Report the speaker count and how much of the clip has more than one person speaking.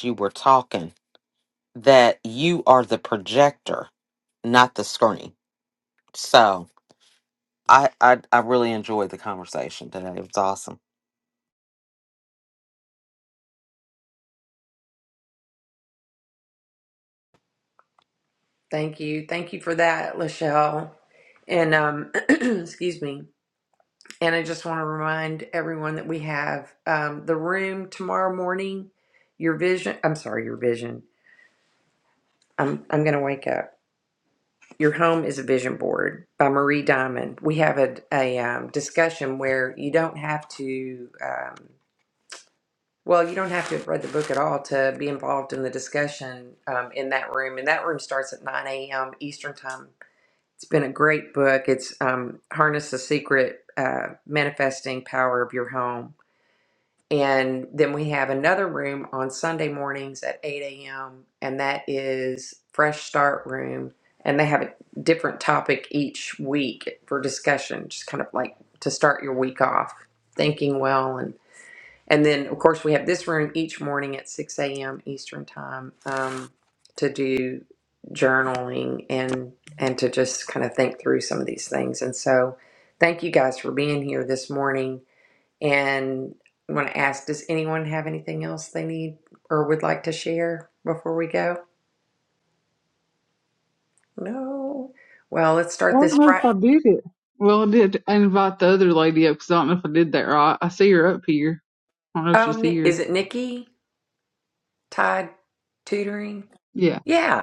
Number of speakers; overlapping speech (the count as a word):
three, about 1%